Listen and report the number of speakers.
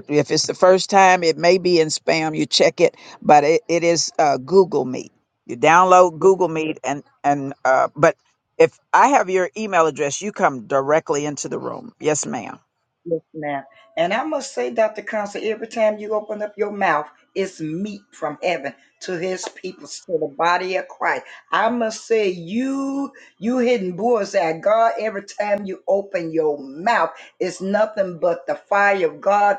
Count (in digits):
2